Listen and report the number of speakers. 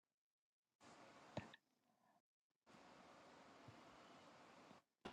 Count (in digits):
0